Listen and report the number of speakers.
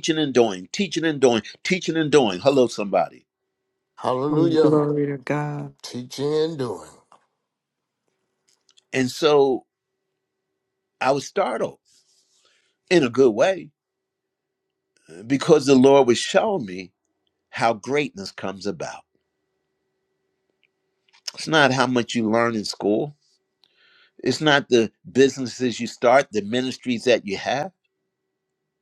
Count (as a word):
three